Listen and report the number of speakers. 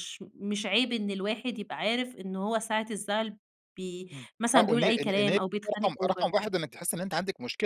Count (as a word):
two